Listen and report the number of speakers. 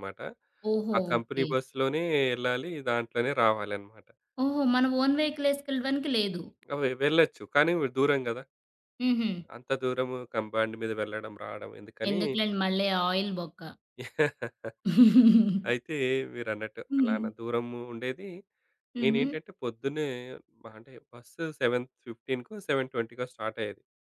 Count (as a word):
two